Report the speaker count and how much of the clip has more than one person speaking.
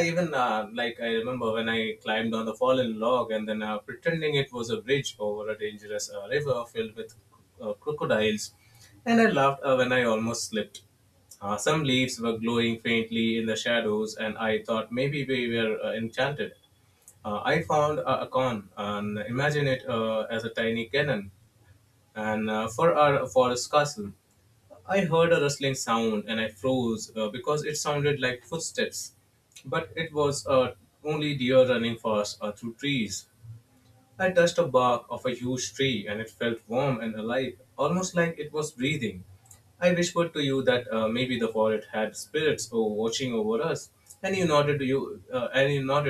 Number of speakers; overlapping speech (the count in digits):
1, no overlap